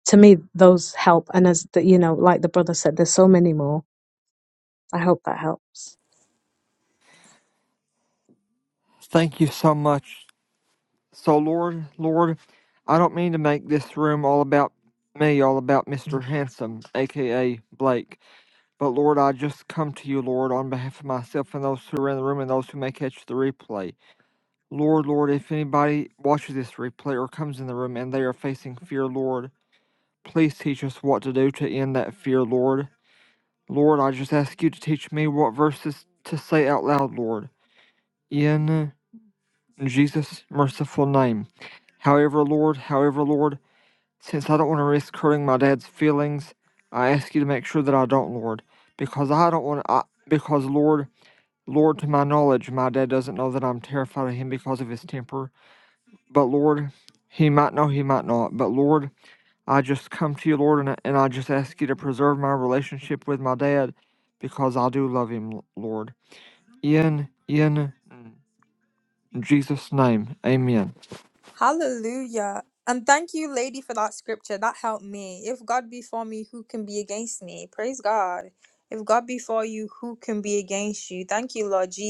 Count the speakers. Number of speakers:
3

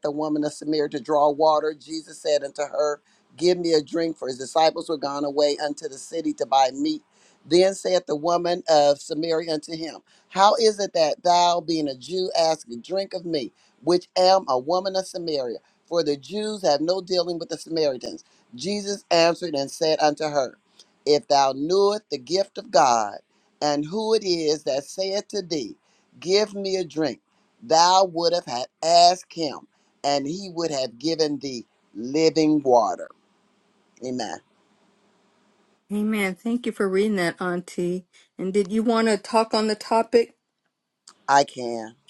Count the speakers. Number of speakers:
2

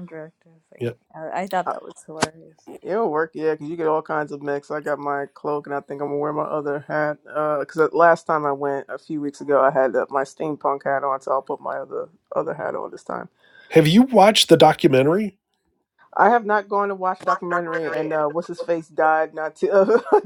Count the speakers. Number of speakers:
3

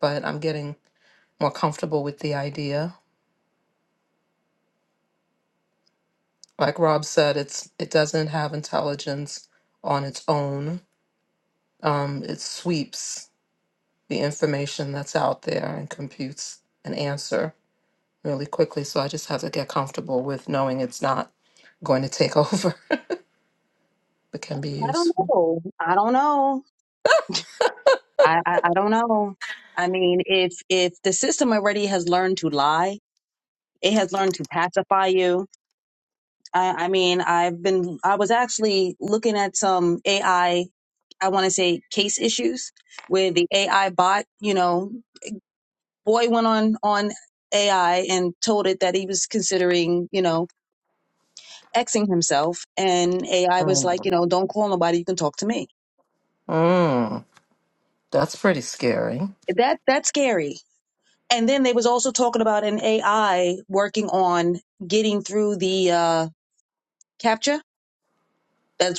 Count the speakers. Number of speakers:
2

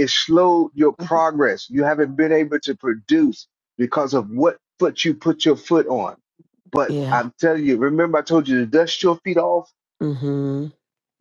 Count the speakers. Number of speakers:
2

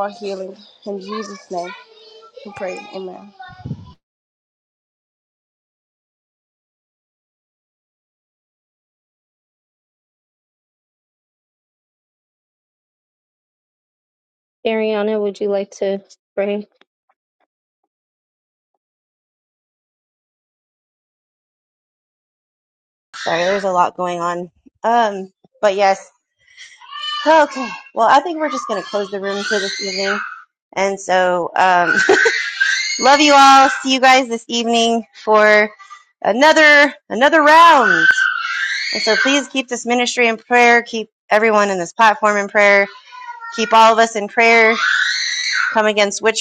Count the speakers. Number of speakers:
3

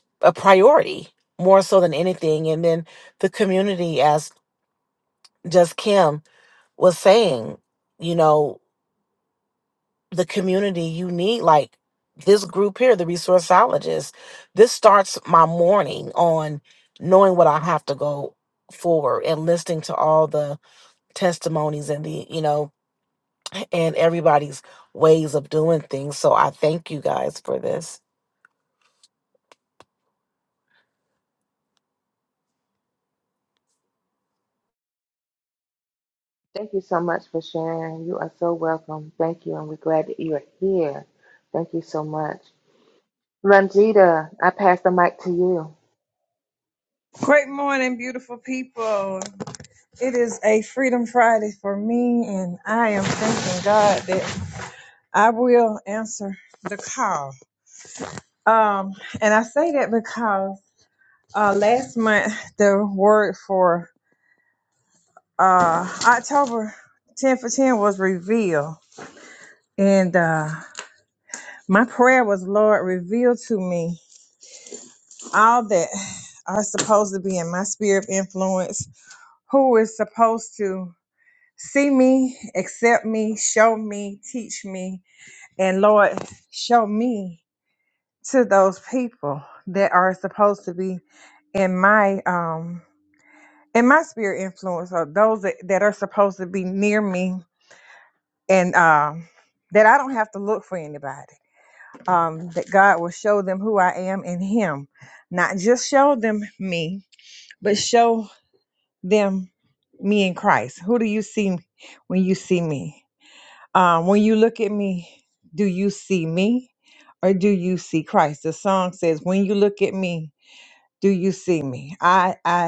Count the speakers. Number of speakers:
3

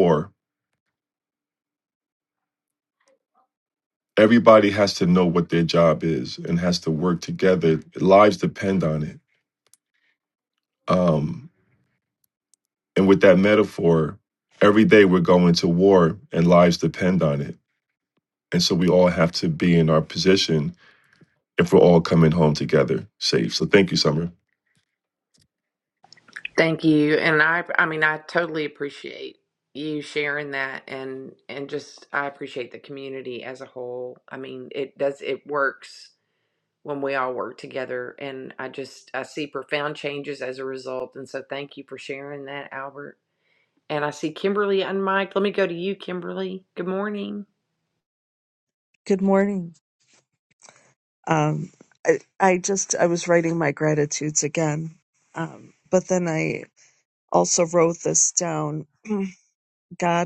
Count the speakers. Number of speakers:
3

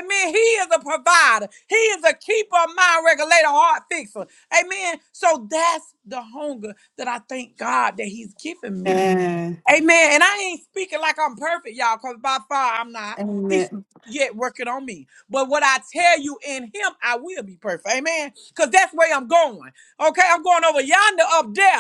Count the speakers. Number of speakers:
2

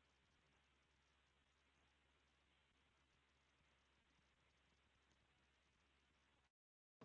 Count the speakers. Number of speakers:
0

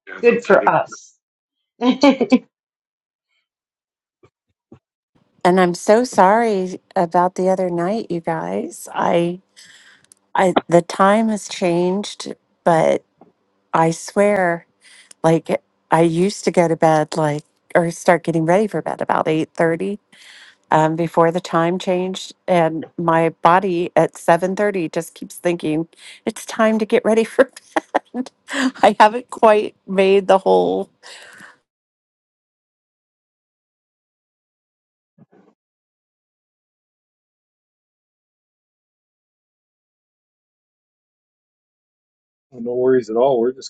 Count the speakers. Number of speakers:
3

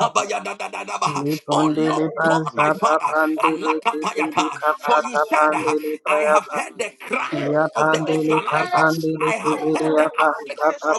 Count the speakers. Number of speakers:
2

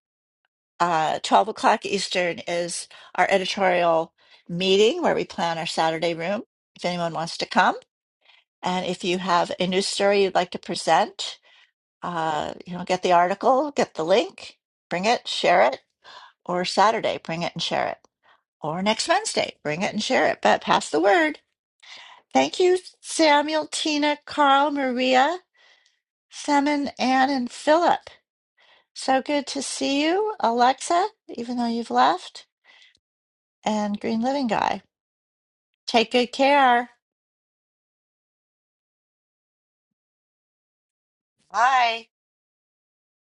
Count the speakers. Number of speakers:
1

